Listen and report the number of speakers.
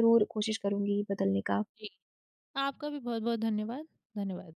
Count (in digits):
2